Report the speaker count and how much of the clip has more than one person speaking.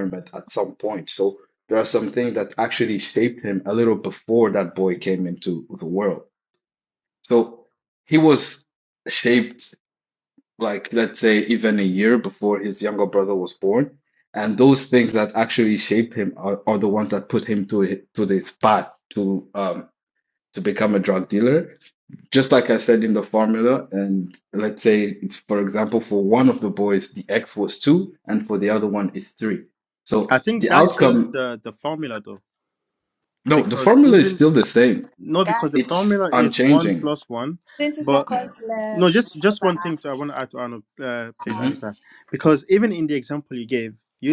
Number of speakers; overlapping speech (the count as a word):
three, about 10%